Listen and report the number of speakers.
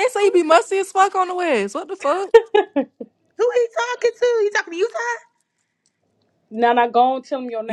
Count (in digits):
3